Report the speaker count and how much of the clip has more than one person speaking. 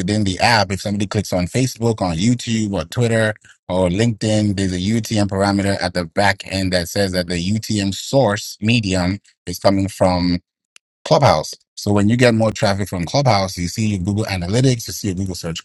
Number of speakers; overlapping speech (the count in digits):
1, no overlap